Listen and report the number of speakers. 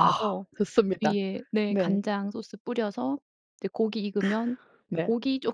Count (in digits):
2